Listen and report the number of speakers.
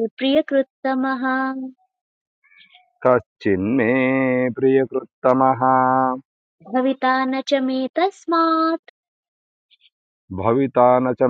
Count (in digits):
2